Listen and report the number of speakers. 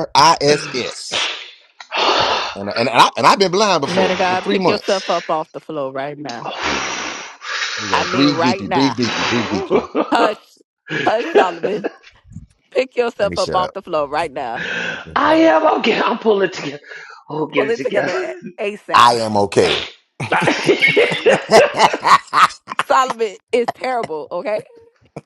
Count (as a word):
three